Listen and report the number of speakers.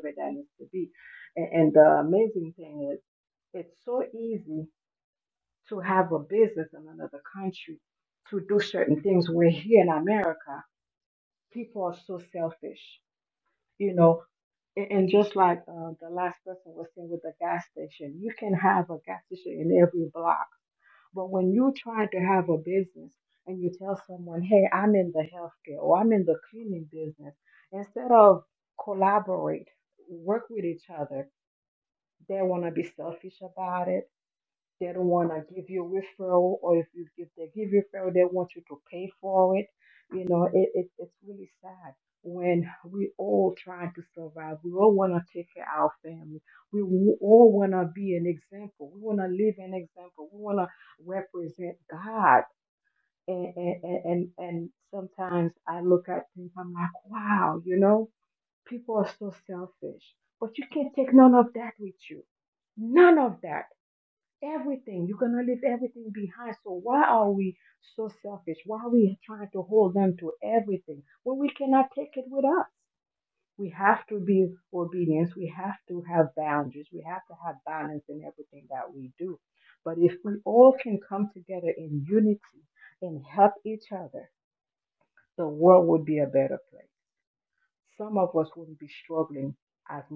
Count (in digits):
1